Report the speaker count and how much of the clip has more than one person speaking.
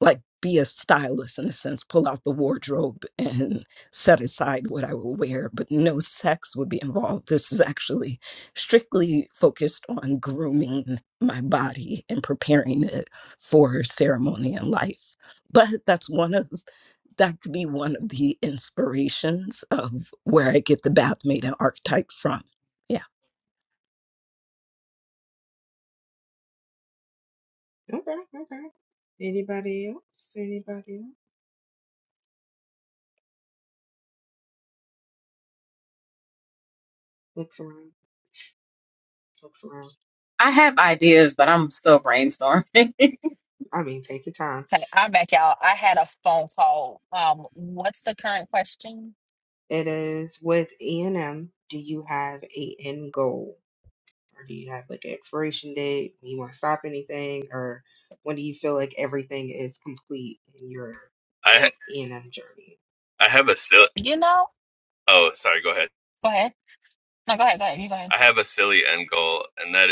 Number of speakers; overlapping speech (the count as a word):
five, under 1%